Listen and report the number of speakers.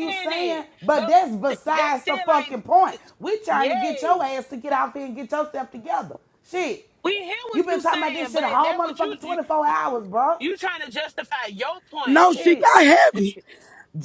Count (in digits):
3